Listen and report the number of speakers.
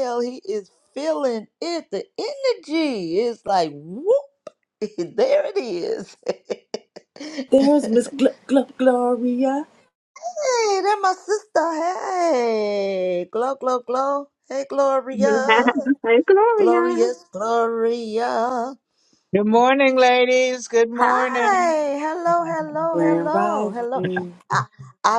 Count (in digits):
4